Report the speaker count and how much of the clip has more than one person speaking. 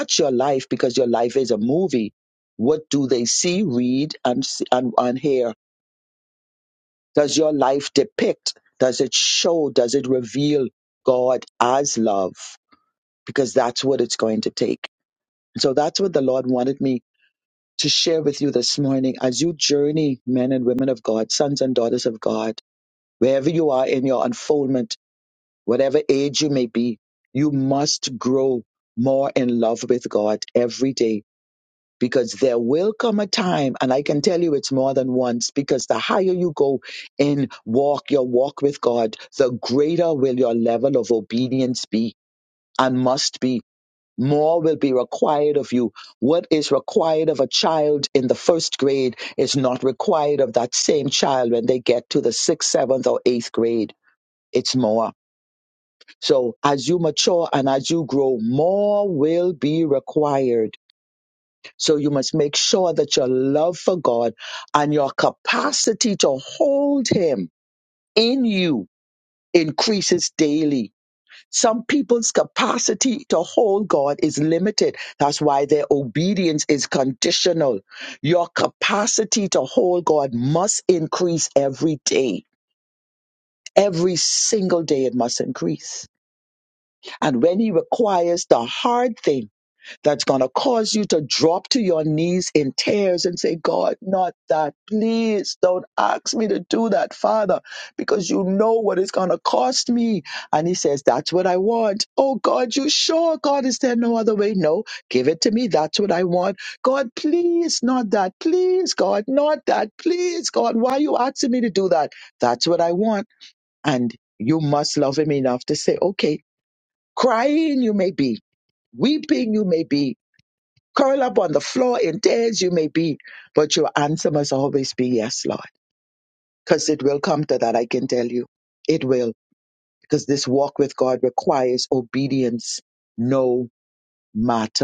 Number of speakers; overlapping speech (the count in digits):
1, no overlap